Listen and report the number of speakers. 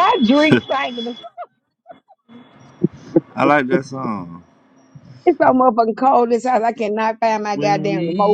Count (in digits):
3